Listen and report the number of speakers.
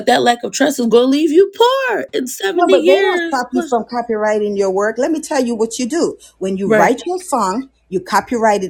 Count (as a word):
two